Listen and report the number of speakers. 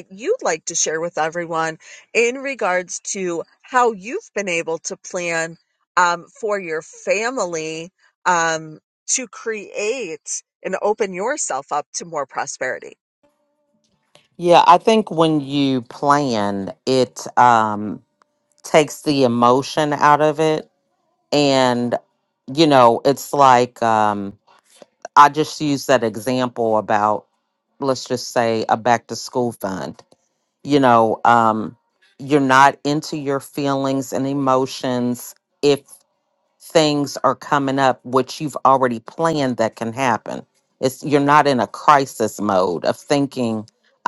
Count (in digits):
2